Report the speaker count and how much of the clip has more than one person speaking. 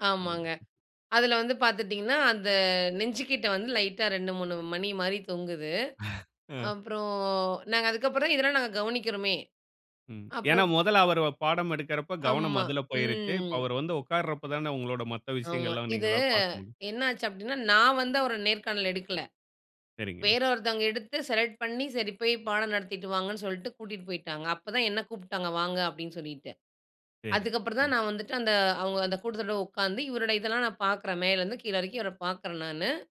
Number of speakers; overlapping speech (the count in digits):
2, about 9%